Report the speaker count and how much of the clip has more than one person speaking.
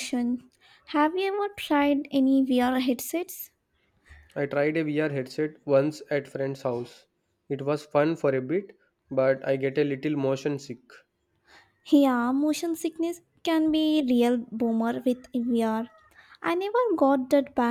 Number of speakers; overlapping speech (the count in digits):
2, no overlap